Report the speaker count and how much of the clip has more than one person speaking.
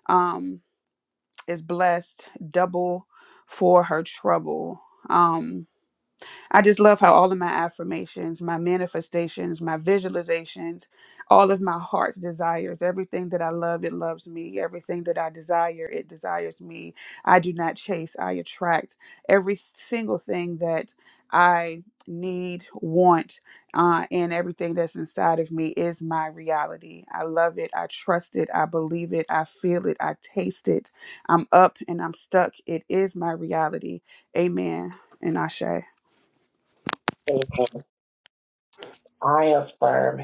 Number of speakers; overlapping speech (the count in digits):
2, no overlap